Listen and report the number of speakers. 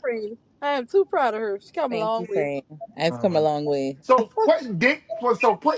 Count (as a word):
three